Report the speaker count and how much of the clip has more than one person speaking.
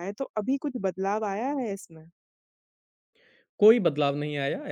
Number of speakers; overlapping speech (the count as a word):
two, no overlap